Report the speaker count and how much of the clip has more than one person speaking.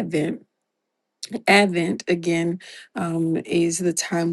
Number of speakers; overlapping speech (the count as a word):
one, no overlap